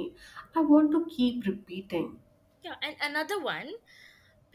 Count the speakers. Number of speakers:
2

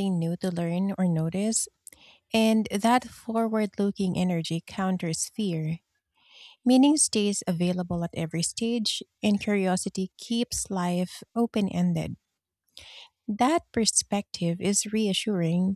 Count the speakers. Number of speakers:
1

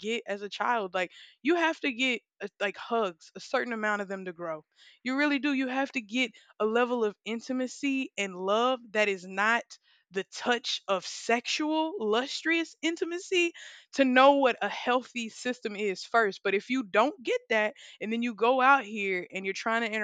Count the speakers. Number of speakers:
1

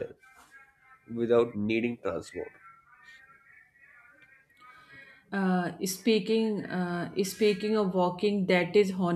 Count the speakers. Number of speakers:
2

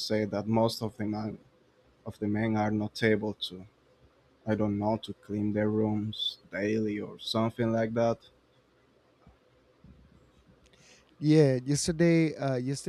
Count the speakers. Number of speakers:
2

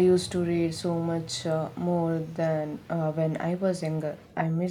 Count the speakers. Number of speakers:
1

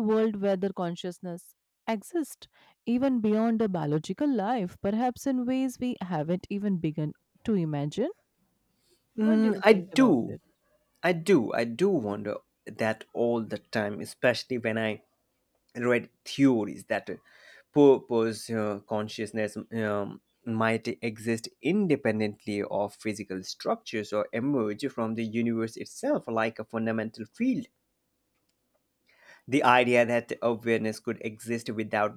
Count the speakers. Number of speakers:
2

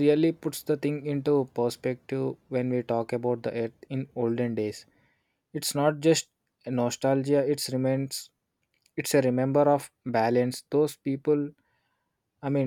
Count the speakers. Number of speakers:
1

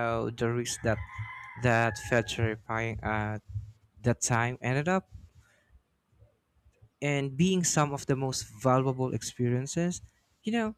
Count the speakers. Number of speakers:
1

